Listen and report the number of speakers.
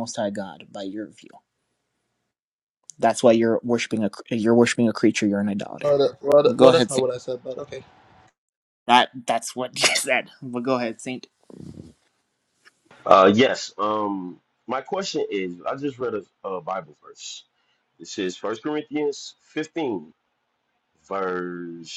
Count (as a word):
three